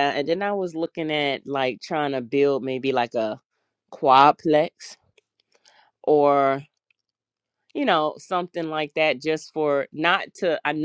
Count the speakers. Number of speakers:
1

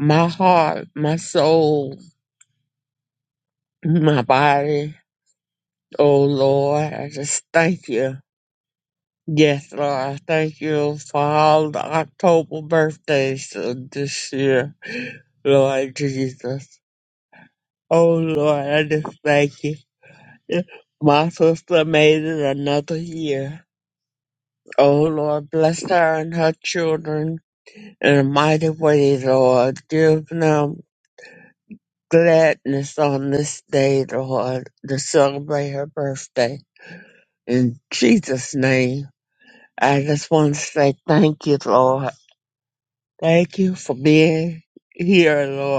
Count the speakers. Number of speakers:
1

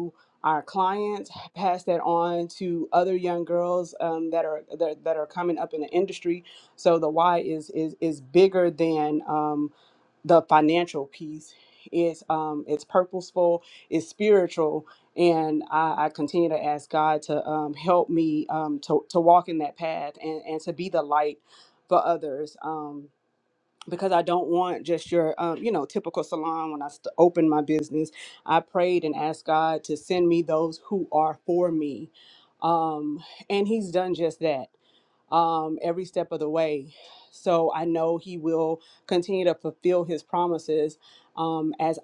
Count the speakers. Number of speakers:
1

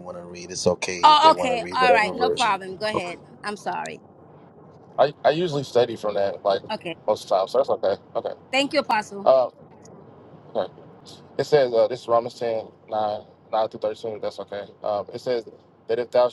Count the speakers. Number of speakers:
3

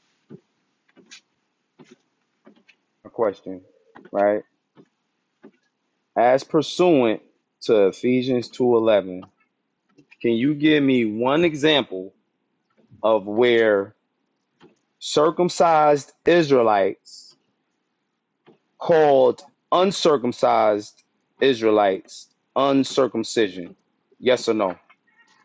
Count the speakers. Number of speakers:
1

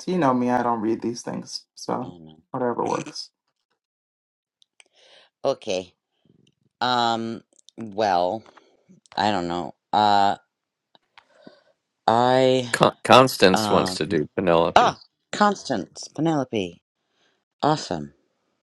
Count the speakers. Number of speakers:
3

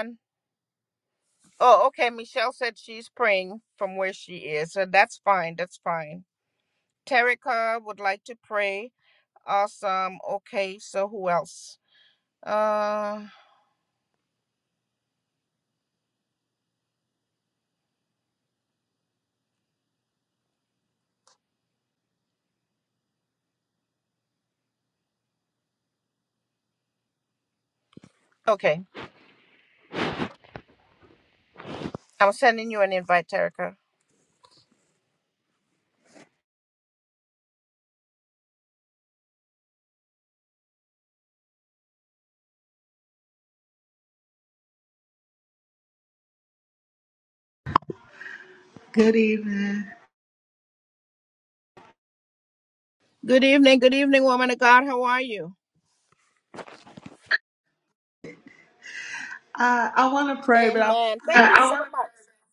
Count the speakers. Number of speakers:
2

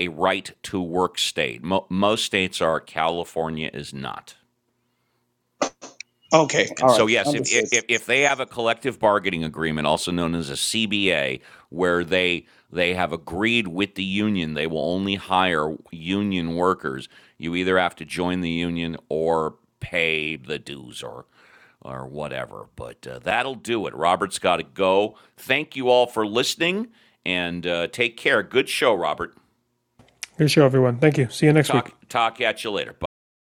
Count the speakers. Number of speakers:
3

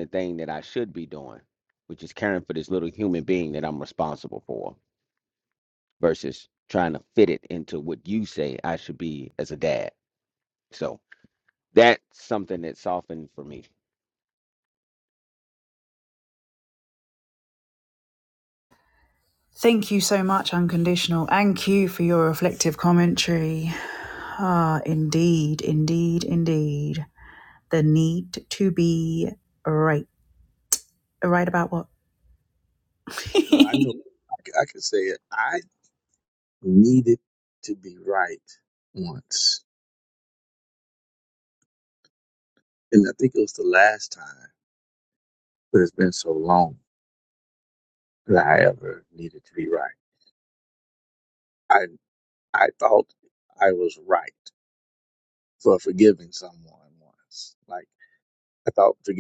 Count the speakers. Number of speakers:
3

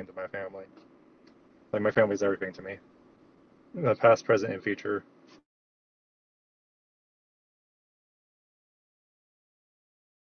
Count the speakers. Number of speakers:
1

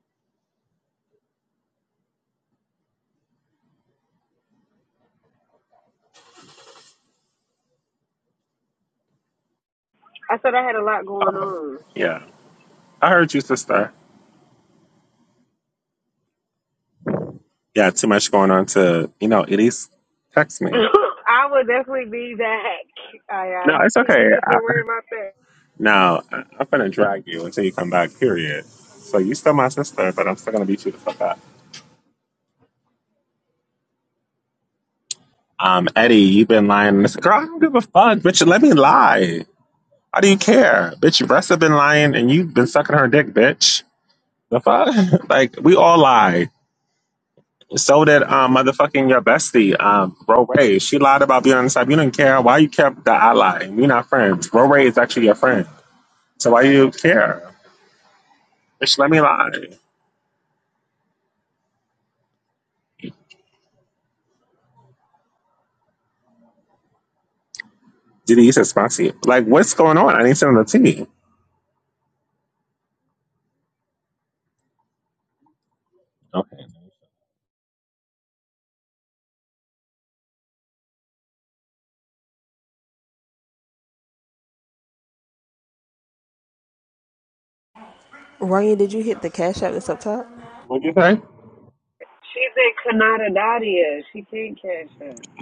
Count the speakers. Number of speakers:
3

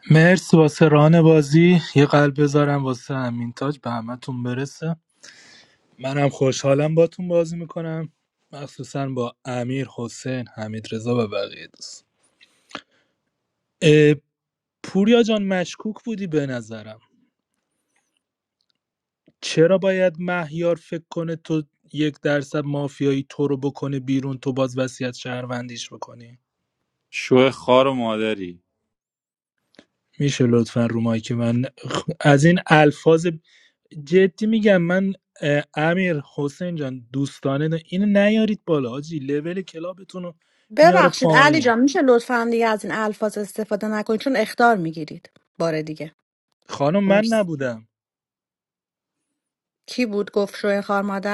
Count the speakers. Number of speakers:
3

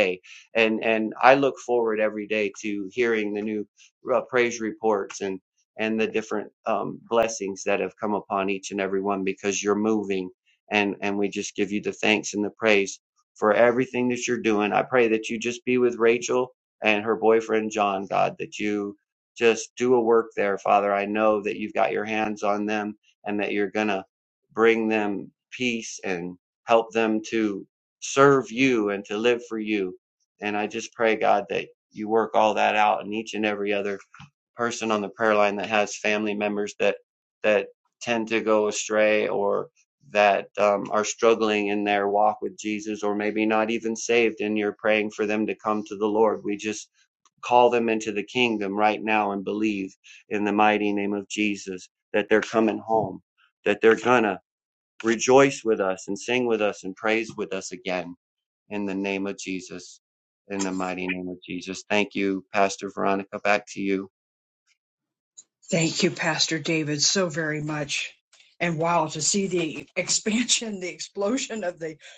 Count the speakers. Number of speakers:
2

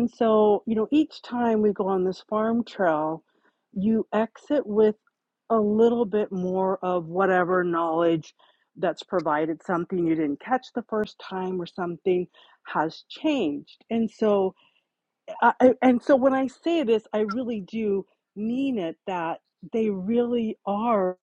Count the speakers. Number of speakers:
1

